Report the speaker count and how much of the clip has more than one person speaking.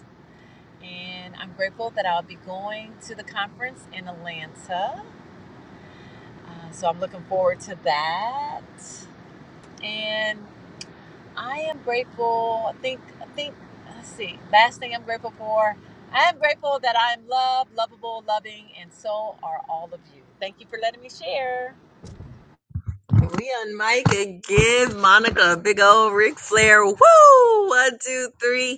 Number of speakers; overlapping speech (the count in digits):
2, no overlap